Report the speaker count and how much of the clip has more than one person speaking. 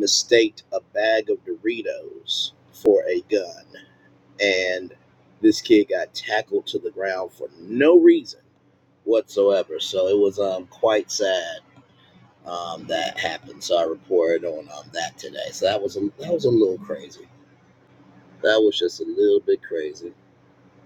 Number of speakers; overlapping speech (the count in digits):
1, no overlap